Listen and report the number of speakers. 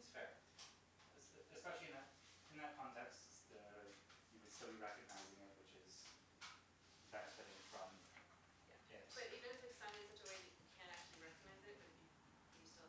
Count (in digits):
2